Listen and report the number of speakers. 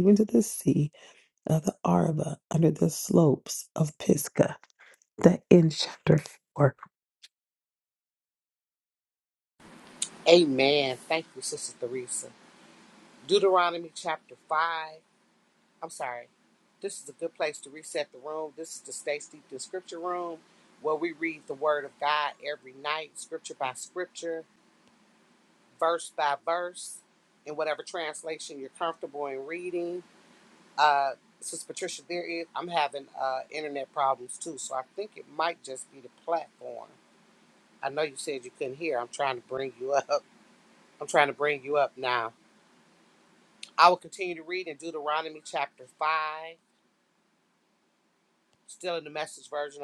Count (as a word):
two